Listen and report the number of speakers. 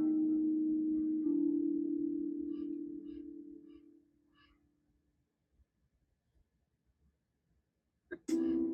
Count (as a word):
zero